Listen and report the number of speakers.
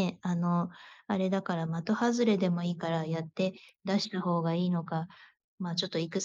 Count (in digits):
1